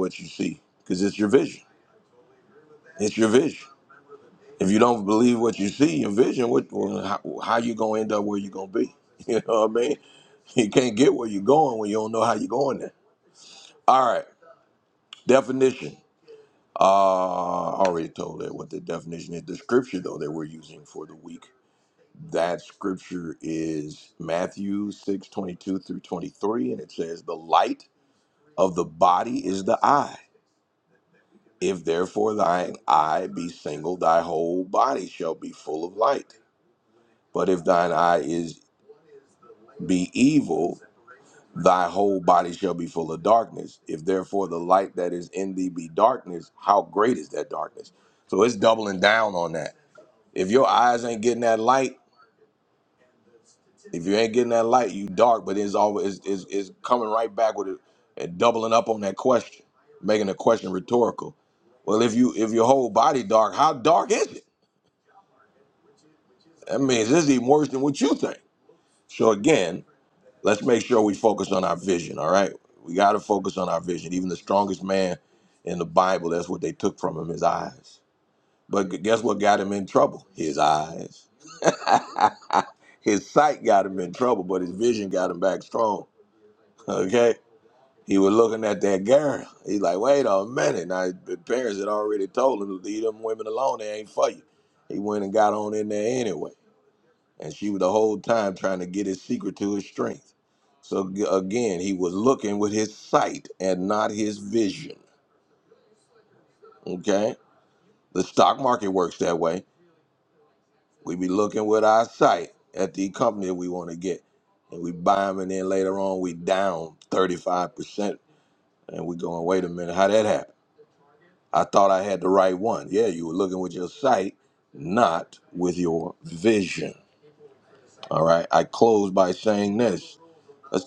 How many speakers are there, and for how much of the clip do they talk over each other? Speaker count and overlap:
one, no overlap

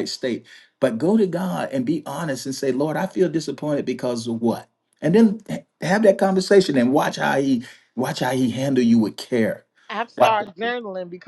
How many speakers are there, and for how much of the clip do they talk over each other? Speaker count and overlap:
two, about 2%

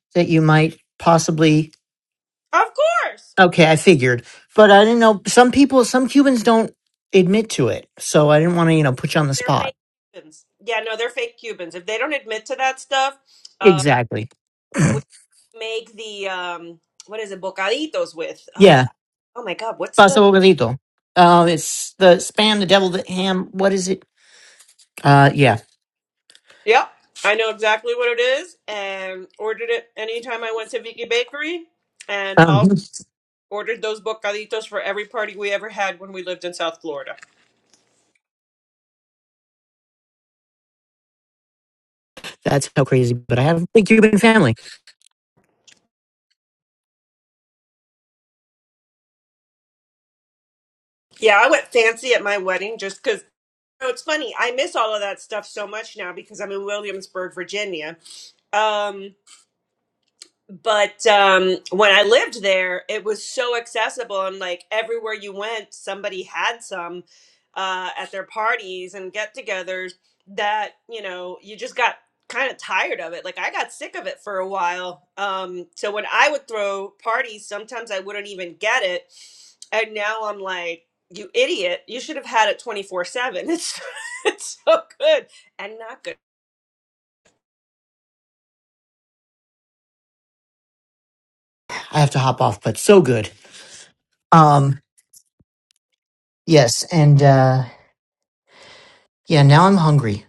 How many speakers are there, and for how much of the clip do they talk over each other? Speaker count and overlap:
two, about 1%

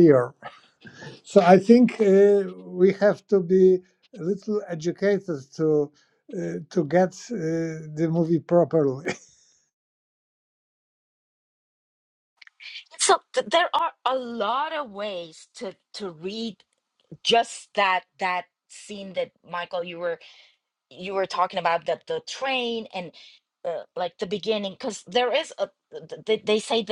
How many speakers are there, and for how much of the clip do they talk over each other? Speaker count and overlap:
two, no overlap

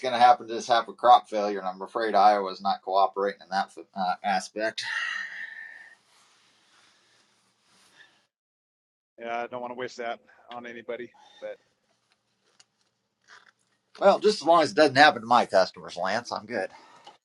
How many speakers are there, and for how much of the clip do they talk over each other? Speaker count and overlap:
two, no overlap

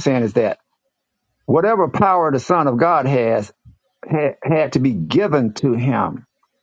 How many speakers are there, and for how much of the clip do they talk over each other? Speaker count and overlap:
one, no overlap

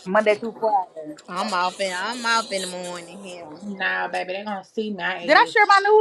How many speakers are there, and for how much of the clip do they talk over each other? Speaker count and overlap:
three, about 5%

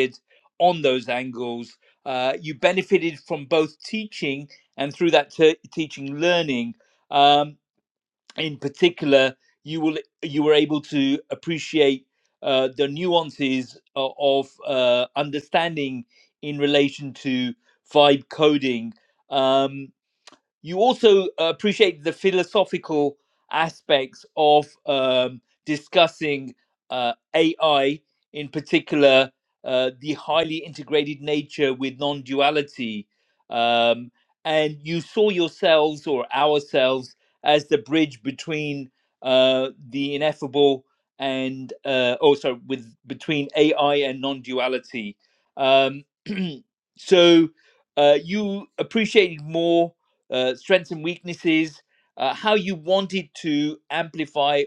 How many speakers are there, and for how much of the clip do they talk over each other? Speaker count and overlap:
one, no overlap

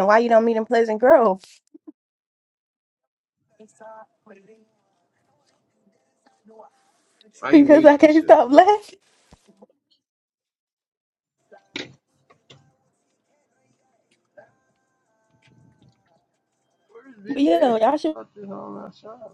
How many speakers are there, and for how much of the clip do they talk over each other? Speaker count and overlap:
two, about 10%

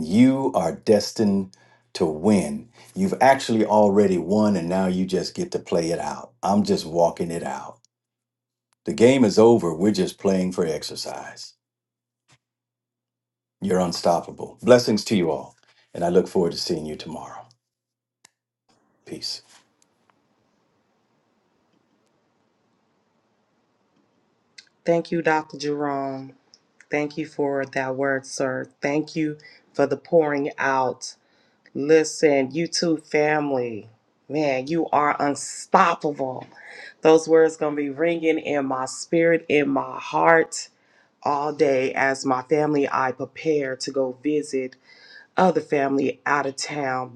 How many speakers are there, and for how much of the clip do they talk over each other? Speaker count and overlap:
two, no overlap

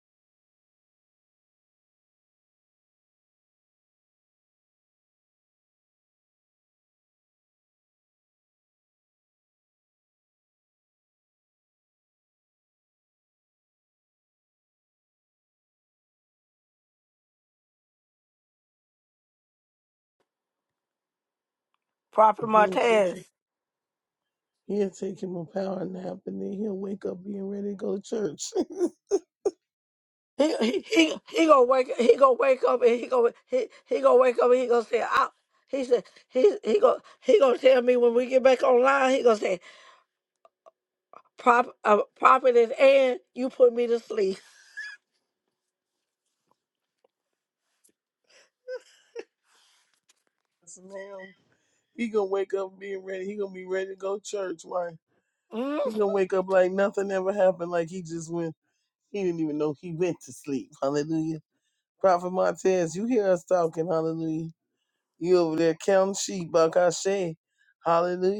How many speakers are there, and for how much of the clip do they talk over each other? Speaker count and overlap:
two, about 1%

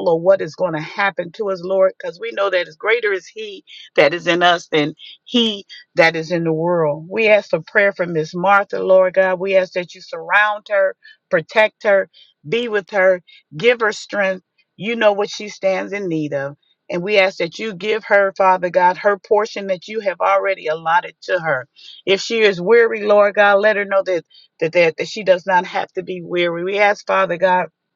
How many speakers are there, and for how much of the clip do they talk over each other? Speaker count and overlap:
one, no overlap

